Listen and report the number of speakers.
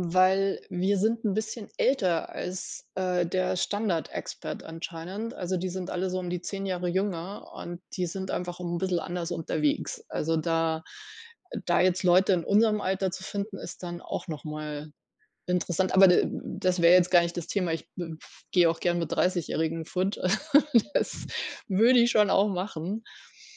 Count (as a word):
one